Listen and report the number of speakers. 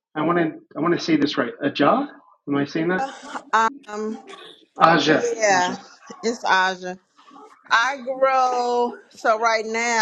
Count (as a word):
two